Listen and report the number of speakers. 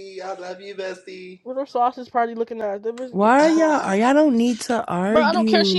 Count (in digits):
3